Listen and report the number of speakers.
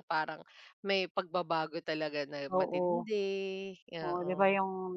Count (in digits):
2